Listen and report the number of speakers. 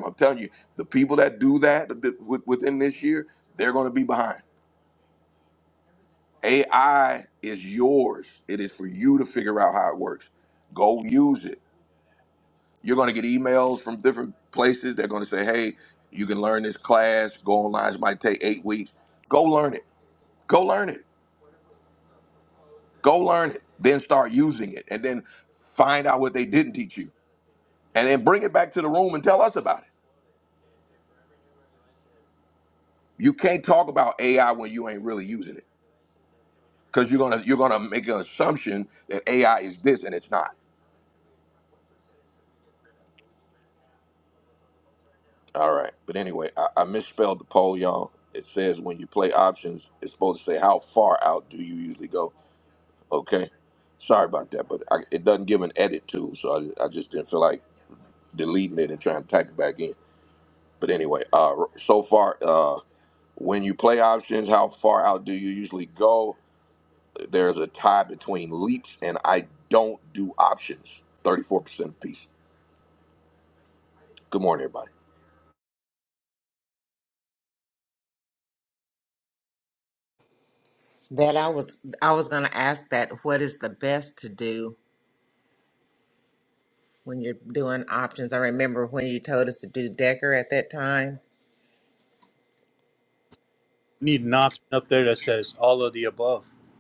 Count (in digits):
3